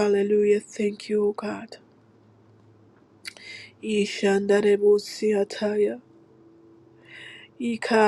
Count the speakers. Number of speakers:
1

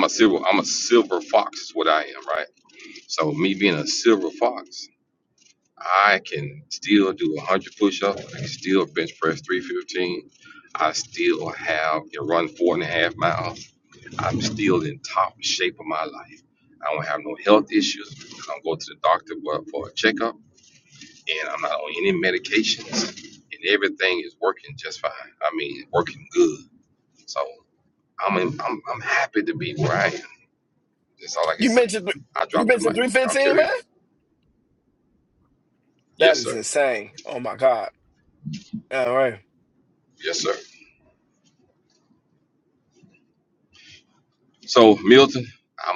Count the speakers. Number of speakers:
2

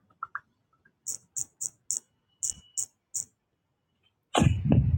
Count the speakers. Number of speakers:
0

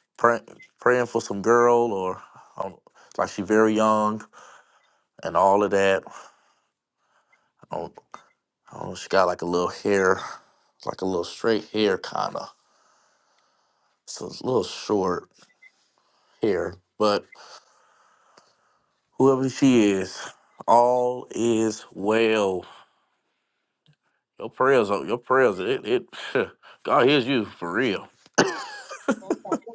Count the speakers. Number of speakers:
1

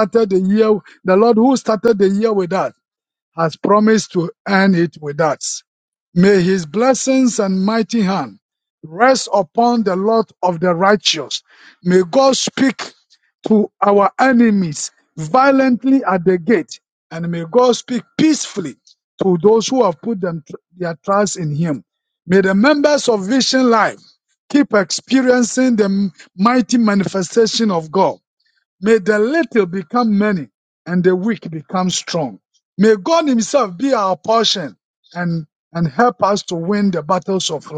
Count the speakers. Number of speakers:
1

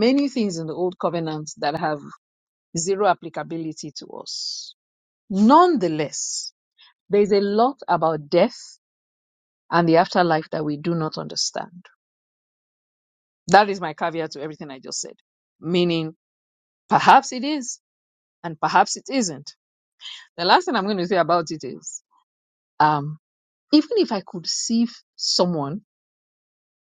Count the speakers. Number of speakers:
1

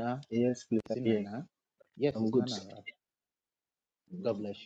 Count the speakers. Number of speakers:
2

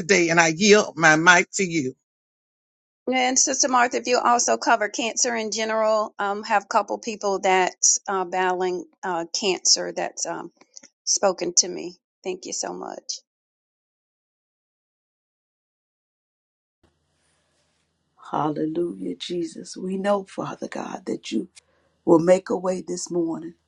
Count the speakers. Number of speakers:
3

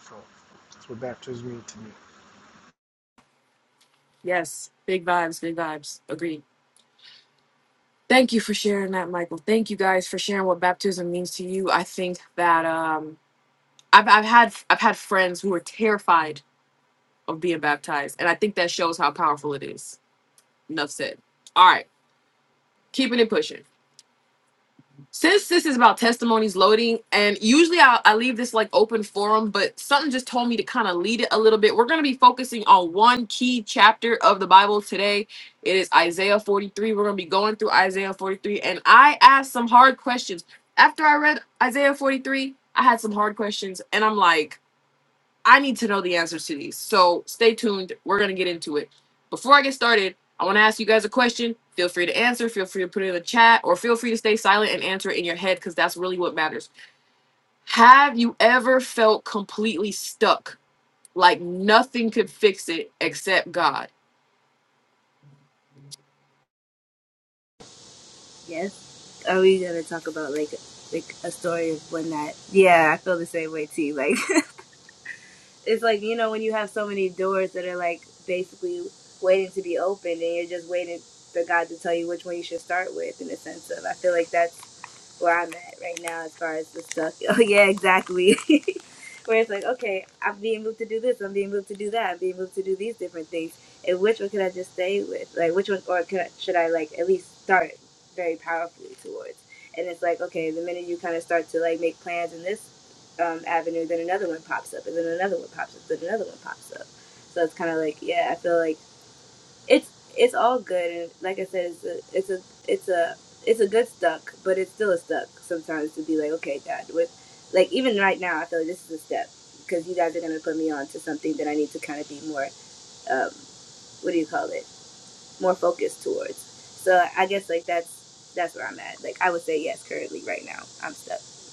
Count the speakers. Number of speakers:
3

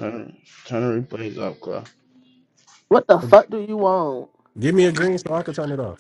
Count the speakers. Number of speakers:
3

